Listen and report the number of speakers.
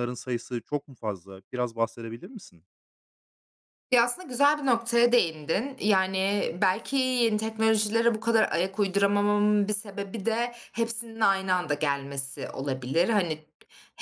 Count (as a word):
two